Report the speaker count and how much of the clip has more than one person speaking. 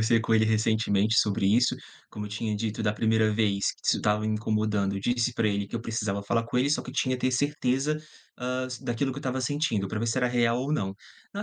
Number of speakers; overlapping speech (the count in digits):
1, no overlap